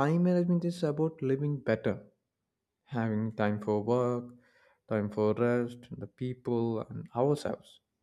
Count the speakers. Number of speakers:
1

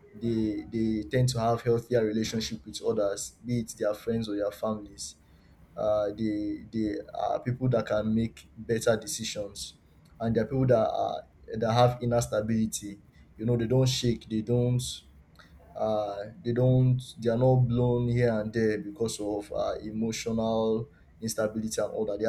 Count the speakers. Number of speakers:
1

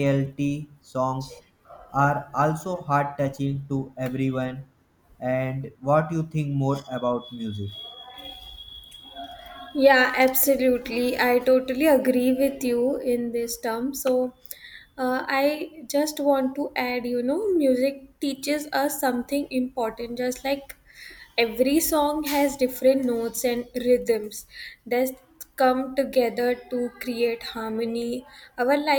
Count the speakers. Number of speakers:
2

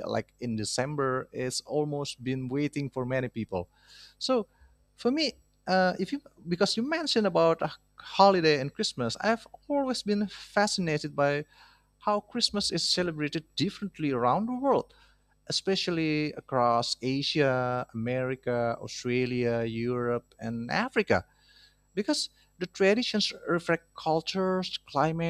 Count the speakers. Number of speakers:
1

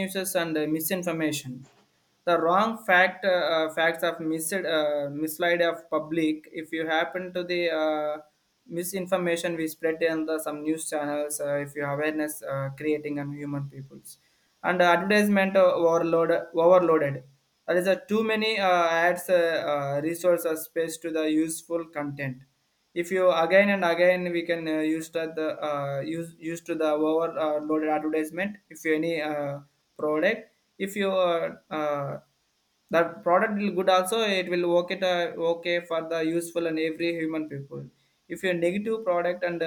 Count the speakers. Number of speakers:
1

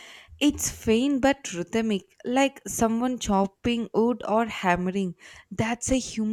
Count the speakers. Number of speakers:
1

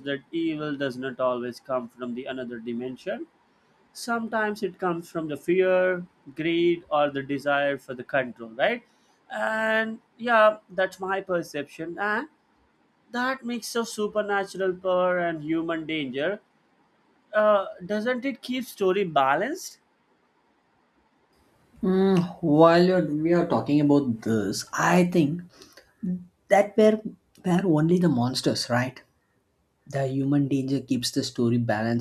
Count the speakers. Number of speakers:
2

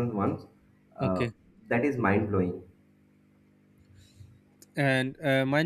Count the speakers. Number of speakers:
2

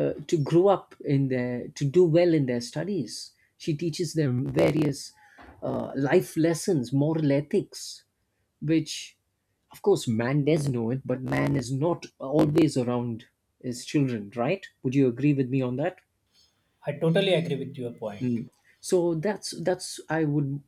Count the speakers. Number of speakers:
2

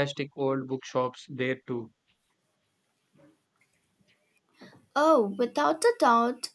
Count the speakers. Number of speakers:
2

